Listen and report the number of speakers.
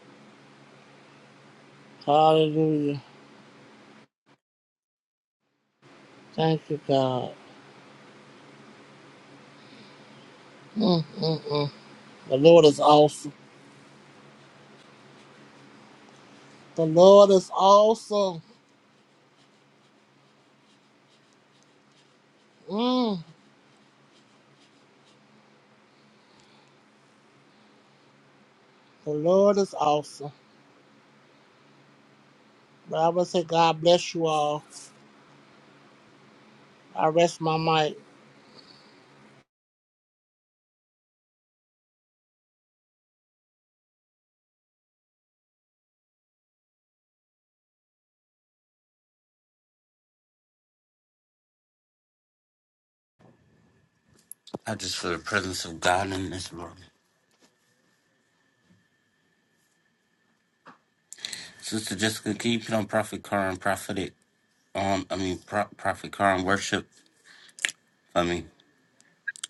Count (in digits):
2